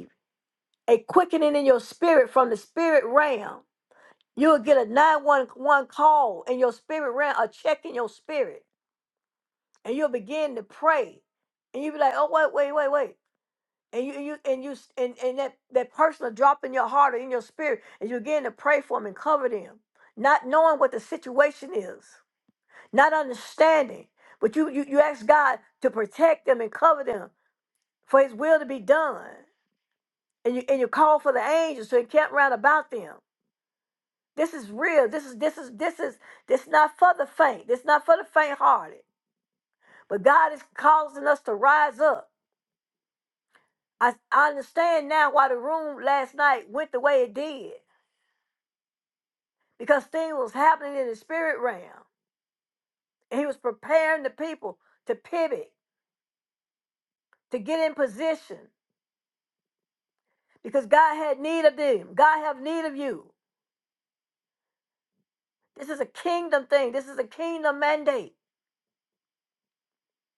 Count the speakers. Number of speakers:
one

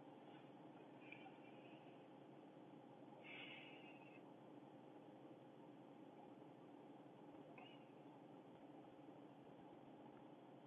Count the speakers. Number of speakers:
zero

